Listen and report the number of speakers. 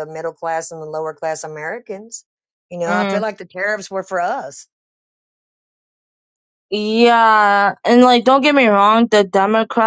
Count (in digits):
2